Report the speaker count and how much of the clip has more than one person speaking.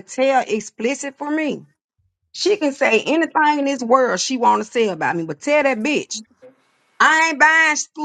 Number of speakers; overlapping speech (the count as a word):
one, no overlap